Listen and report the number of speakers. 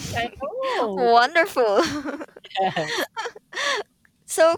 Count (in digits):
2